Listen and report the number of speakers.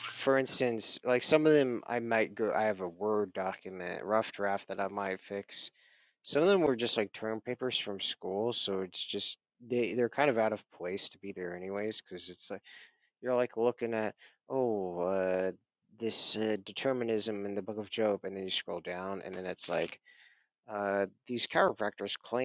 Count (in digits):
1